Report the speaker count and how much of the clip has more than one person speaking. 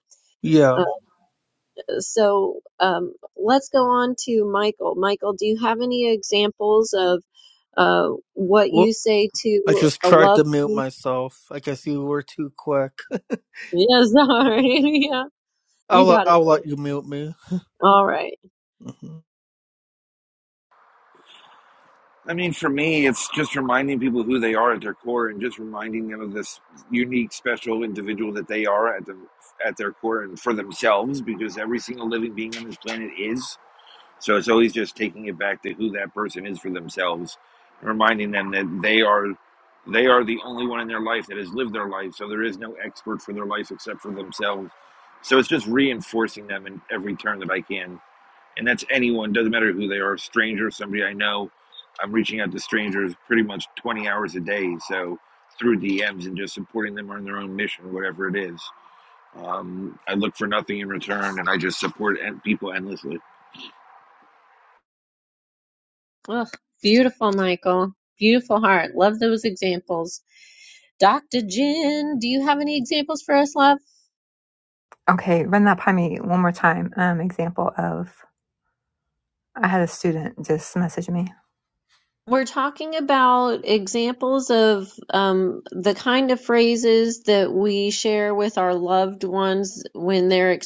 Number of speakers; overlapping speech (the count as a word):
four, about 2%